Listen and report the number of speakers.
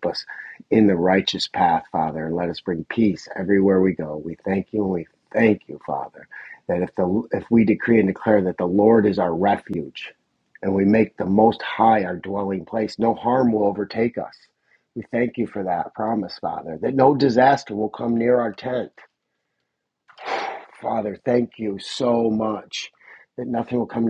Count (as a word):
one